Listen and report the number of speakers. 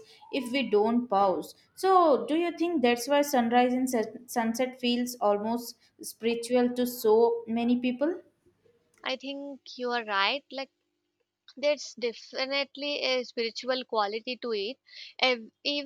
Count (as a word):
two